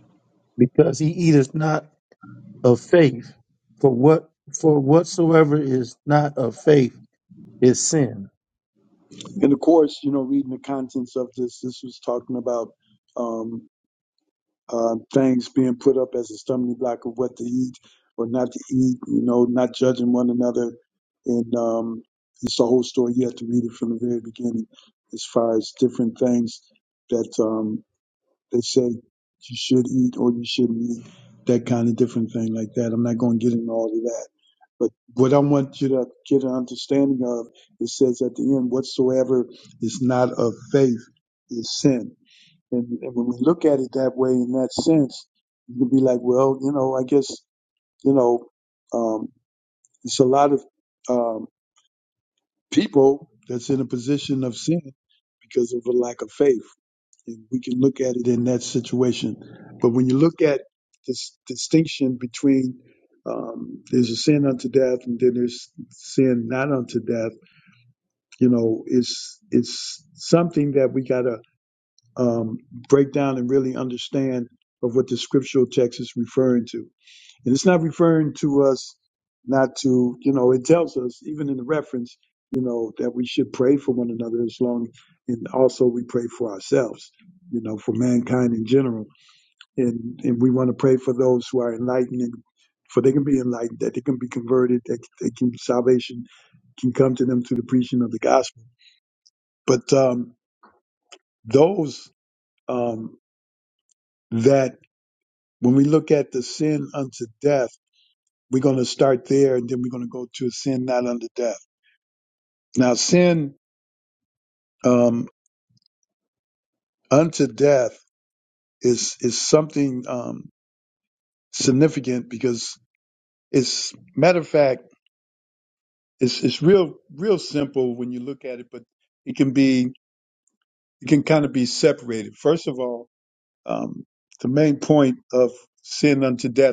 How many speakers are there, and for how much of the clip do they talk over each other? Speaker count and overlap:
2, no overlap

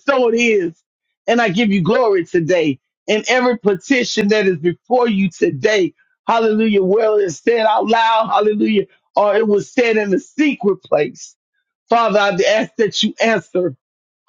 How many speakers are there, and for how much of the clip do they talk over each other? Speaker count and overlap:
1, no overlap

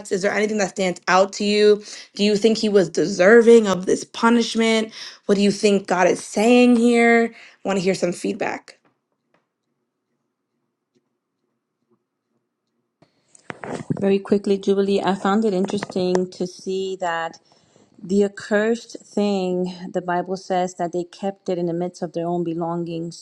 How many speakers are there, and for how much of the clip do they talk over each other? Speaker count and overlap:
2, no overlap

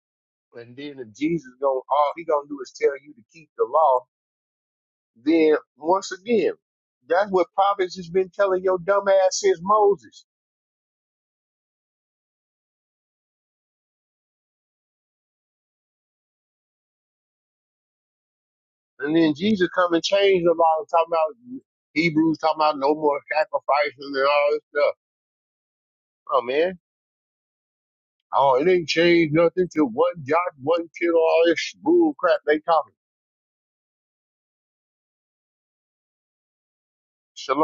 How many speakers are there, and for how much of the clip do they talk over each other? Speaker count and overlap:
1, no overlap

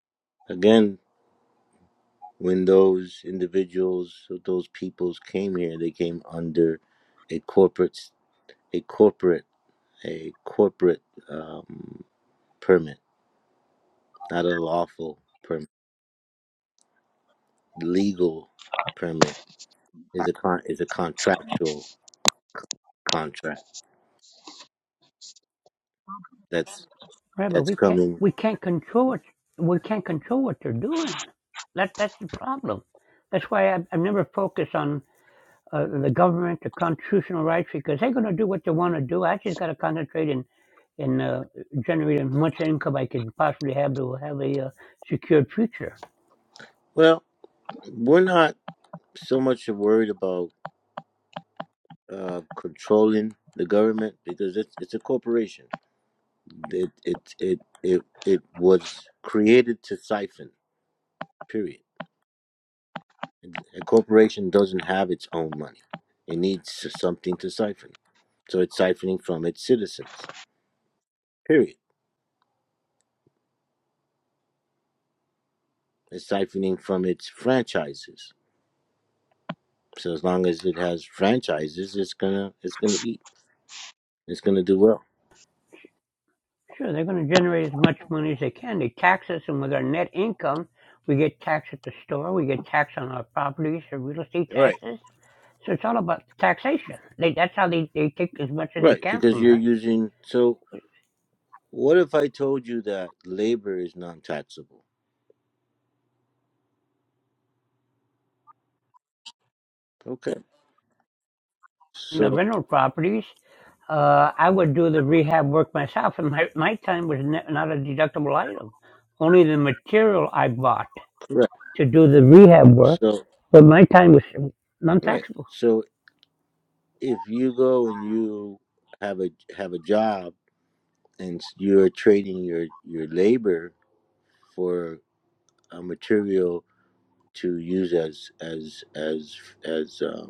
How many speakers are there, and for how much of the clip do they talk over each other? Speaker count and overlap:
2, about 2%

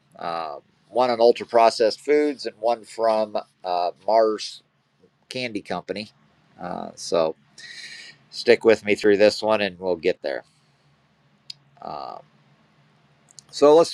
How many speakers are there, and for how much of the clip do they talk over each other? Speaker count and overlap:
1, no overlap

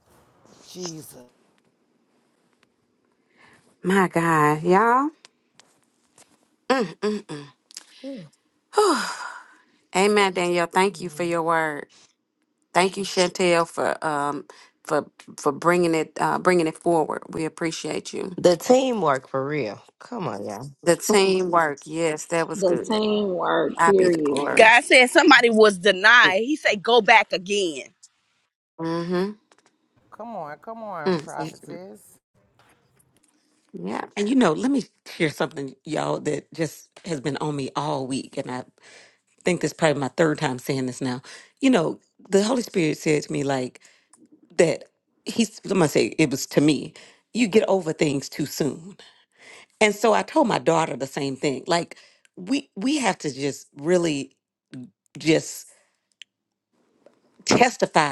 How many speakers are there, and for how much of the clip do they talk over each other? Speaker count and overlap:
6, about 3%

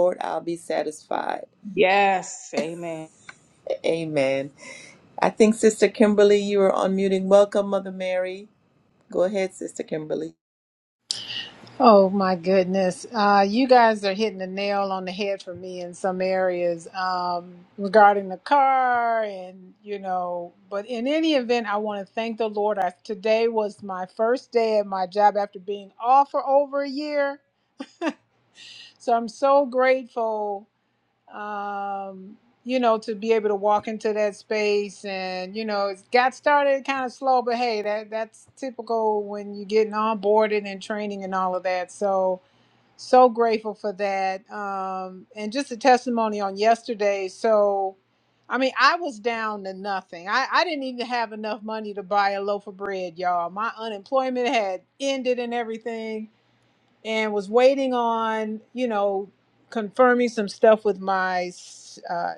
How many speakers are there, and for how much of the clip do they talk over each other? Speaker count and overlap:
3, no overlap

